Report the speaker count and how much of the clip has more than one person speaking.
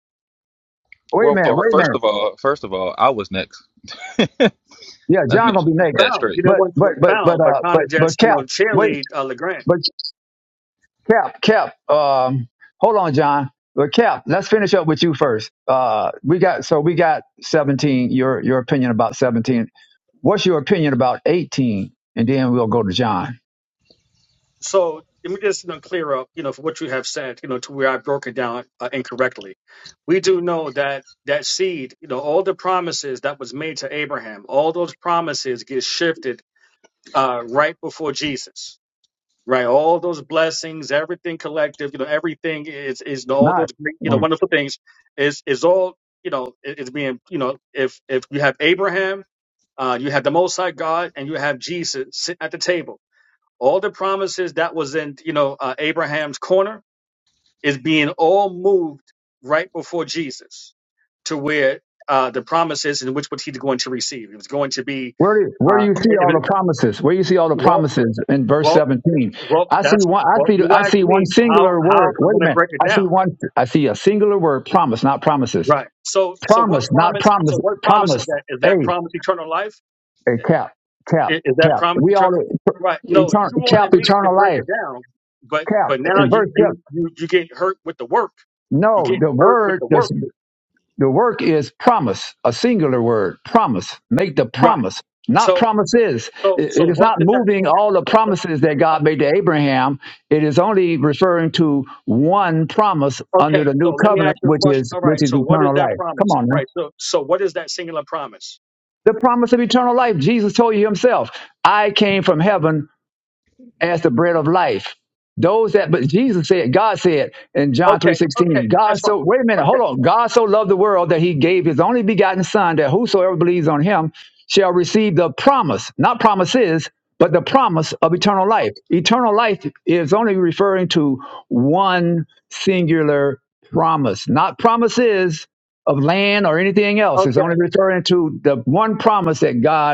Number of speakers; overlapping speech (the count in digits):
3, about 18%